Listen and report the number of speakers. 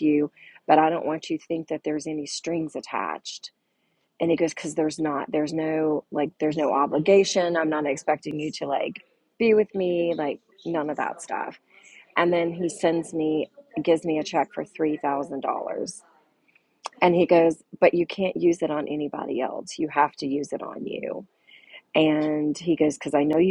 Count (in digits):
1